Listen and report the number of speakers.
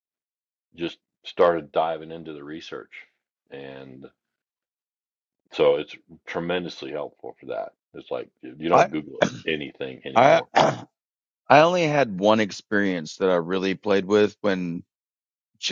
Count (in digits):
2